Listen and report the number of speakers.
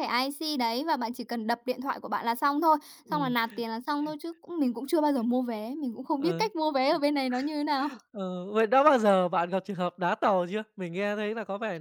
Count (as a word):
two